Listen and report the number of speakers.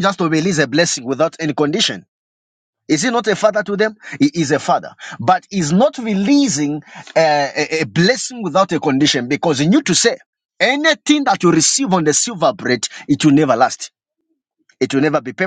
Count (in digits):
1